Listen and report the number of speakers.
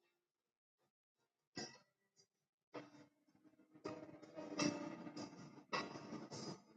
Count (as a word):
zero